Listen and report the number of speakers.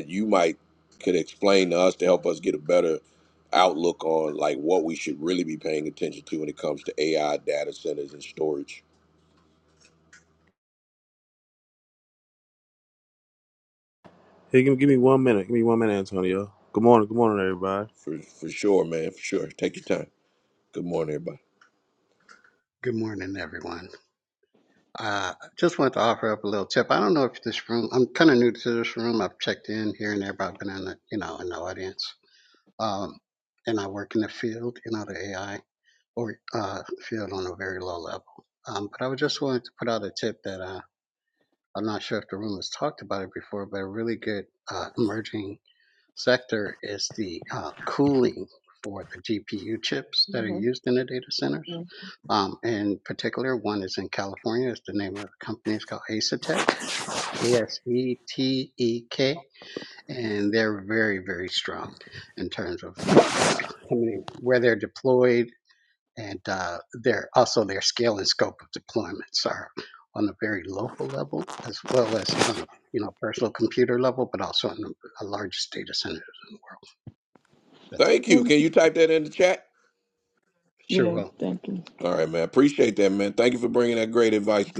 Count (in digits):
4